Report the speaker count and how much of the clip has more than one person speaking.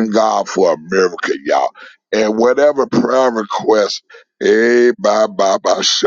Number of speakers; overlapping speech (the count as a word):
one, no overlap